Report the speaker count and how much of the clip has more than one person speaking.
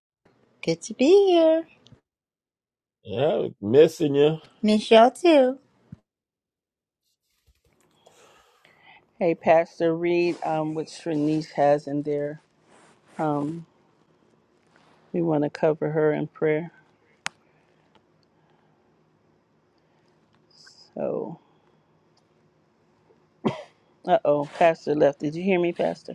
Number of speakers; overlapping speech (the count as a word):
three, no overlap